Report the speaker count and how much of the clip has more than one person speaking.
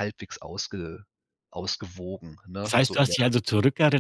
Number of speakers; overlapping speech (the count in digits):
2, about 16%